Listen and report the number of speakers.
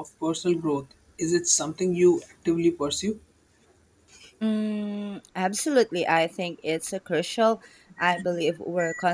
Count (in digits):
2